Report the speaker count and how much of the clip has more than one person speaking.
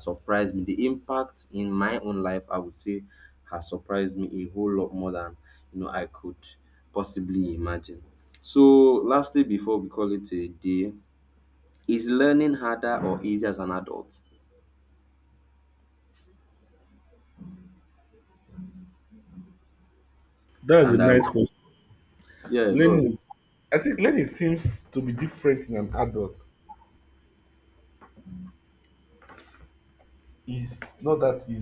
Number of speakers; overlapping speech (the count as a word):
two, about 3%